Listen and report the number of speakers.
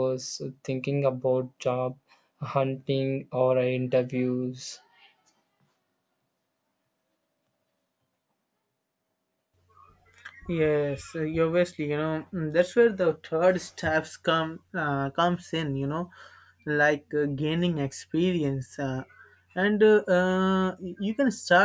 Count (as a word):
two